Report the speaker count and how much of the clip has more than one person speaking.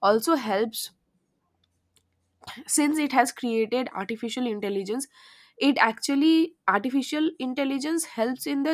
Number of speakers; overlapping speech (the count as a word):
one, no overlap